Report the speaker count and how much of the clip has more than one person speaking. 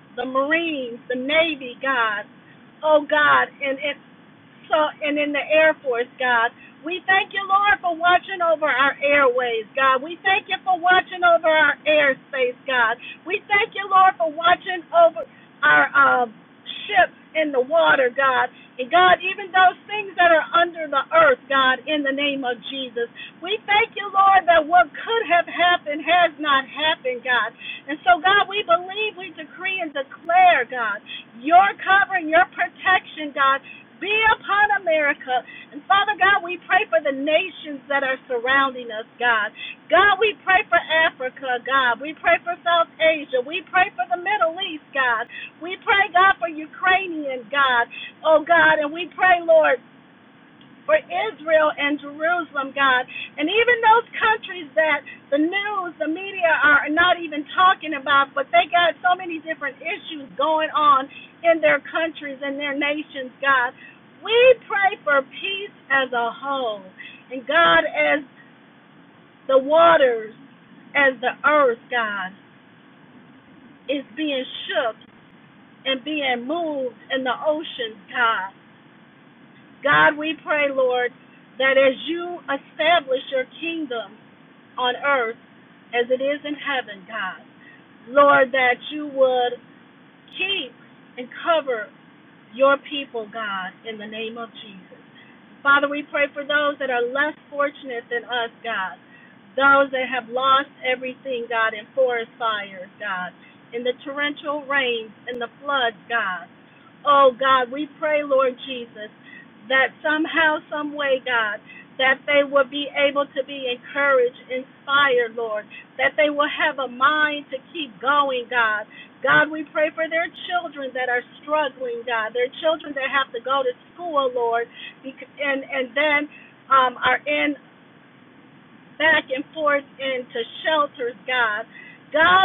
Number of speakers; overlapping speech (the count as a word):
one, no overlap